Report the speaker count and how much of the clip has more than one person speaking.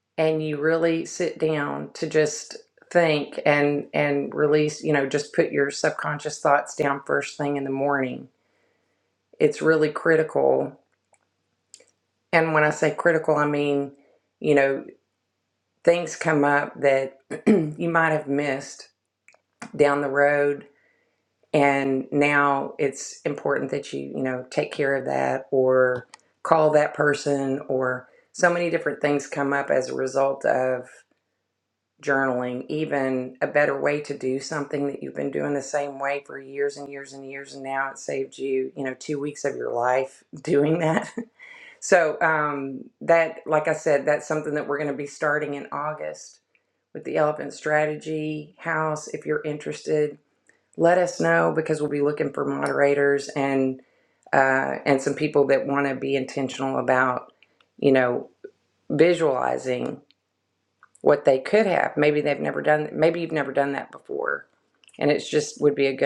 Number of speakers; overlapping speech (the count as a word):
one, no overlap